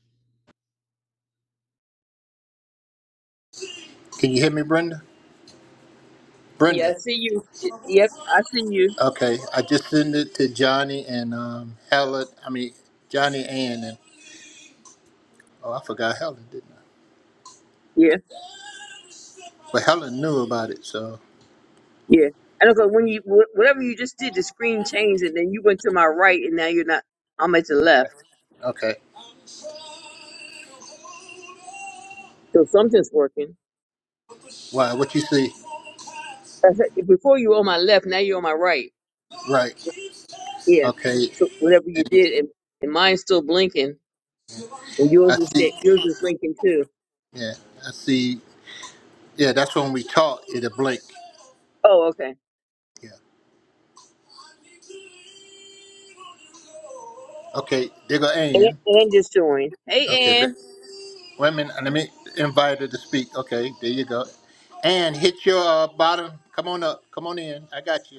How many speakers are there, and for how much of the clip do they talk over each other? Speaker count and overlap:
2, about 3%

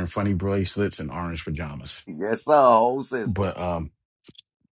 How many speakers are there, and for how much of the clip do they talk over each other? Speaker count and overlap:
2, about 4%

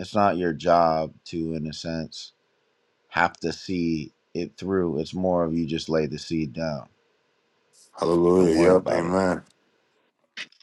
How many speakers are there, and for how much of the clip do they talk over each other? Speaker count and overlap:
2, about 7%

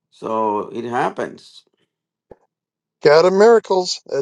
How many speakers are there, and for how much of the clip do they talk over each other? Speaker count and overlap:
2, no overlap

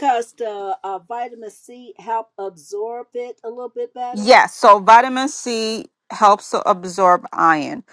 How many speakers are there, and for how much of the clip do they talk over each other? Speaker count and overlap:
2, about 3%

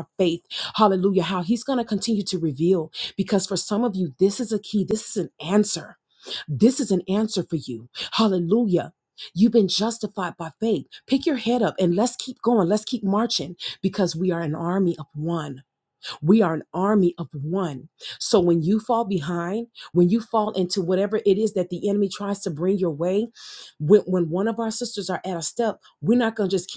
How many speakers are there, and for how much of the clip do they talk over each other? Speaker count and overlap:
1, no overlap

